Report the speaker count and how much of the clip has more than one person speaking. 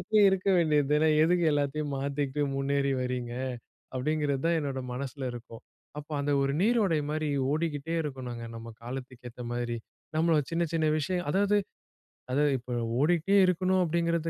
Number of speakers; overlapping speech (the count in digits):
1, no overlap